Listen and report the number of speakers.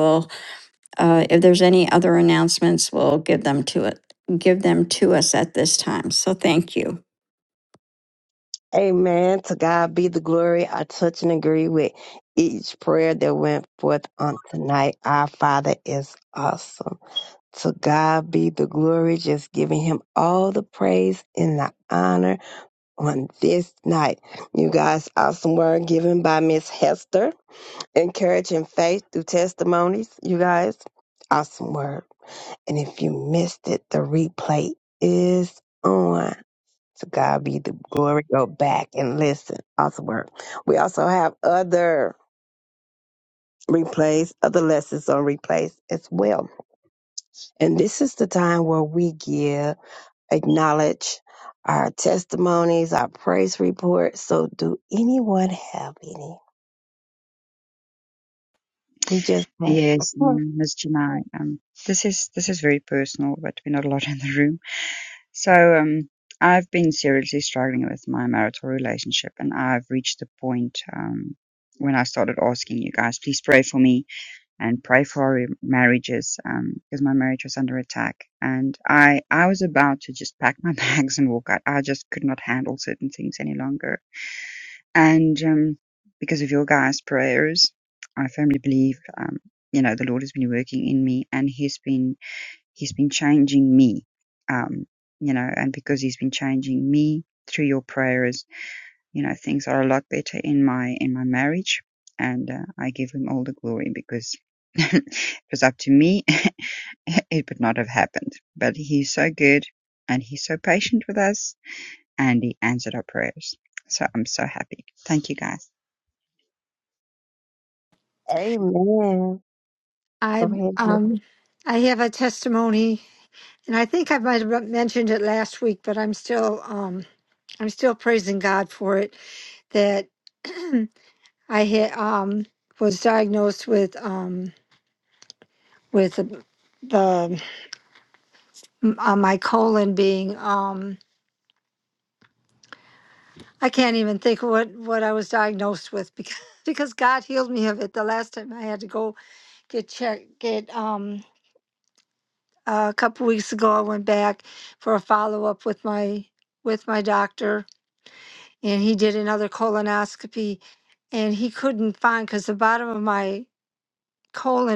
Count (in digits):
4